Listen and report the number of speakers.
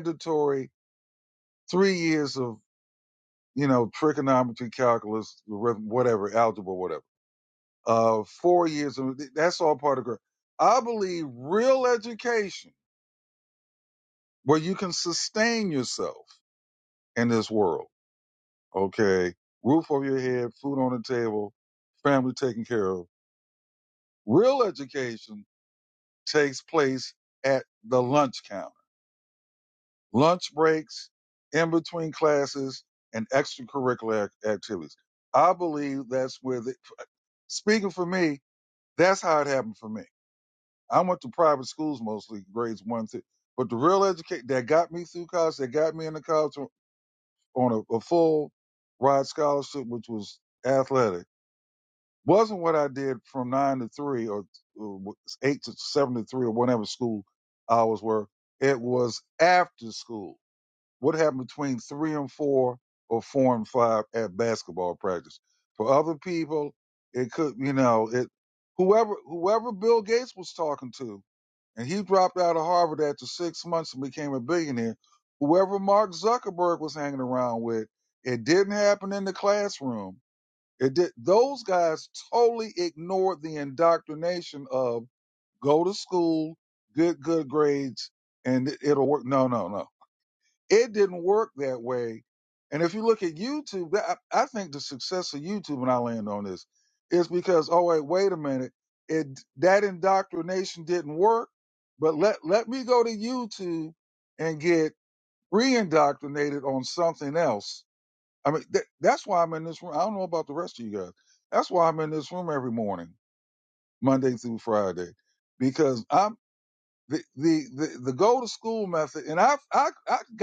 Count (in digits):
1